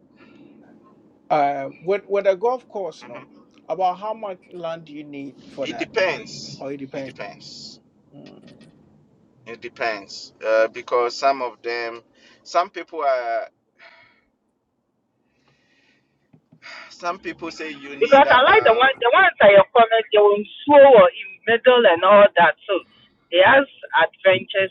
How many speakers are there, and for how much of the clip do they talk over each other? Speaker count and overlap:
3, about 7%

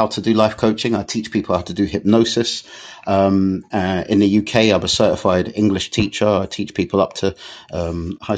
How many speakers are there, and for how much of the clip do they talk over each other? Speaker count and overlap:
1, no overlap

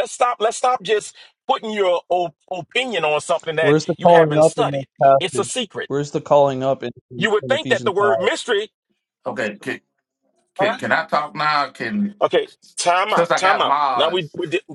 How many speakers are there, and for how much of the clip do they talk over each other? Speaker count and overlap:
3, about 25%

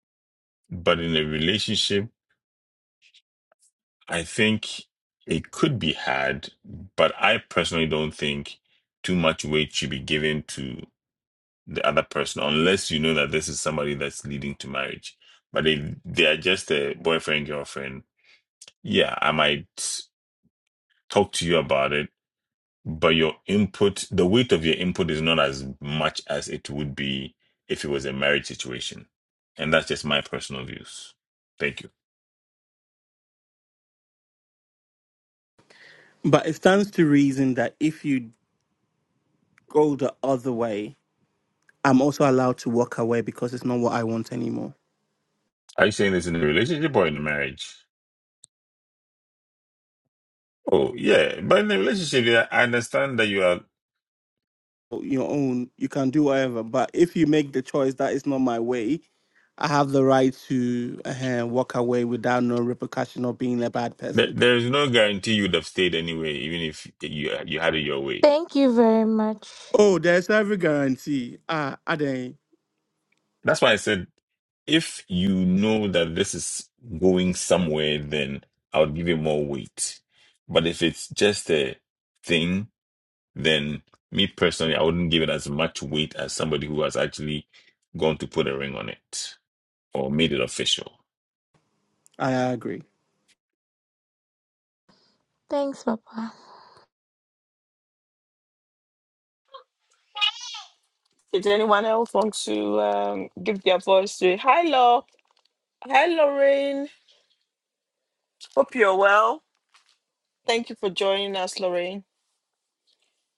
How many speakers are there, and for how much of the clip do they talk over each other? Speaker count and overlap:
4, under 1%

